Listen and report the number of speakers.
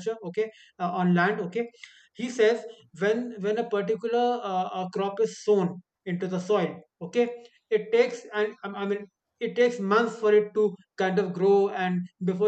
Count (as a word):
one